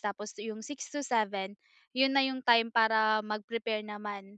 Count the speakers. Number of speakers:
1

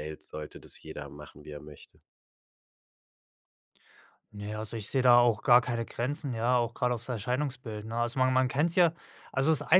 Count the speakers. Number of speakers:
2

